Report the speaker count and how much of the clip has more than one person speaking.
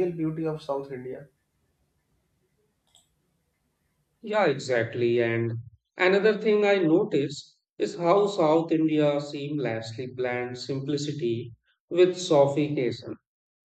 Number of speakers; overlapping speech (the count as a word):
two, no overlap